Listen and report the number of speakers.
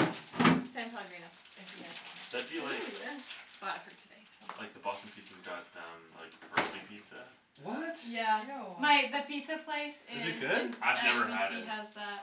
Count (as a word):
four